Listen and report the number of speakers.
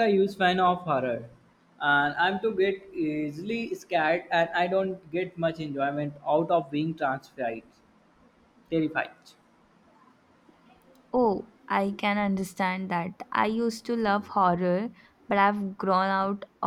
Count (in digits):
2